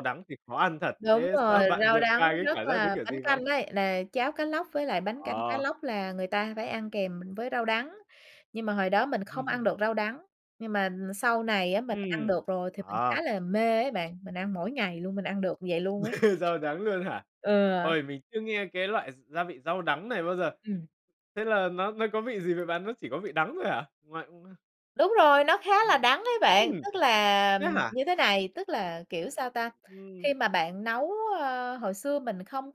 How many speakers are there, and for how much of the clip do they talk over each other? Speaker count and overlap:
two, about 14%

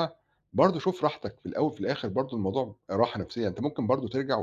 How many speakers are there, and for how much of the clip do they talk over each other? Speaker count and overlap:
one, no overlap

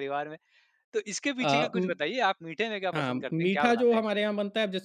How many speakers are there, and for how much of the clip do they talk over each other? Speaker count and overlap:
two, about 33%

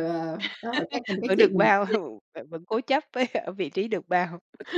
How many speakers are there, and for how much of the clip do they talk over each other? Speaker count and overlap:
two, about 13%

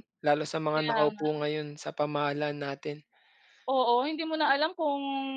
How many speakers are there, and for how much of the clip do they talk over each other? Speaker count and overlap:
two, about 10%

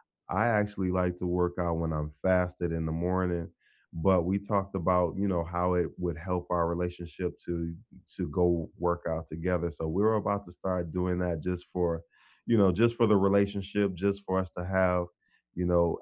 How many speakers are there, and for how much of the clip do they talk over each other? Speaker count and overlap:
one, no overlap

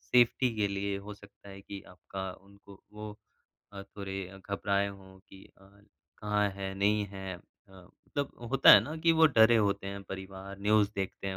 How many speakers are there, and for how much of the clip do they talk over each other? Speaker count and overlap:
one, no overlap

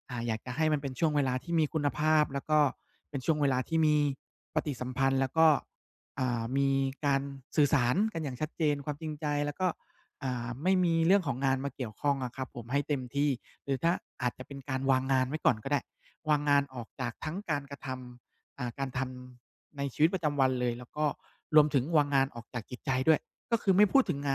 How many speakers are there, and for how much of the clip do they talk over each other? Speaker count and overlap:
one, no overlap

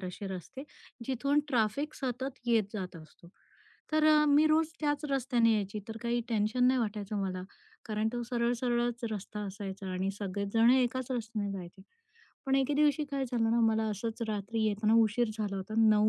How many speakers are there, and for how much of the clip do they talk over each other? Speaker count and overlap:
one, no overlap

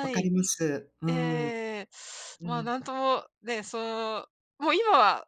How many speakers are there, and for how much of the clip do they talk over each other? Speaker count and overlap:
two, about 17%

